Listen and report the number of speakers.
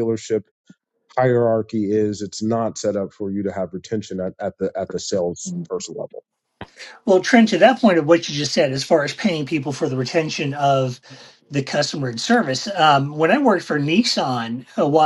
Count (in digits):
2